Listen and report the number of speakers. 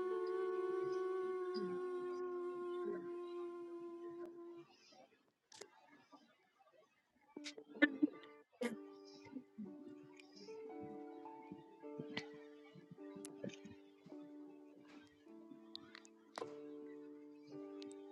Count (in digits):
0